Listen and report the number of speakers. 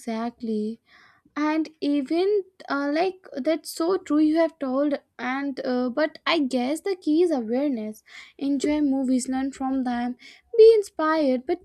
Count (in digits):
1